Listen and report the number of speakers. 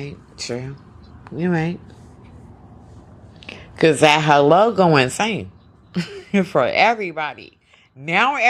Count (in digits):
1